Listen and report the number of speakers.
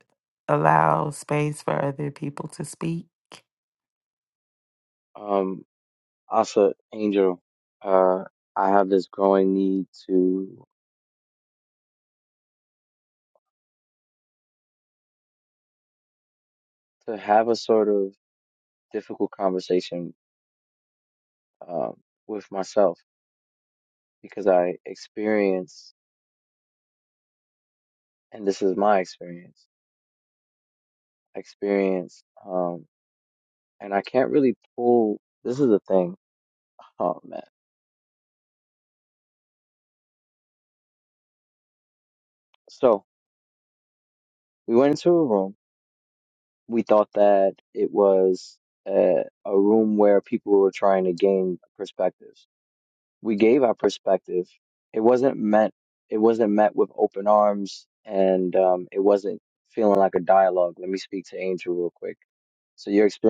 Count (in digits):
2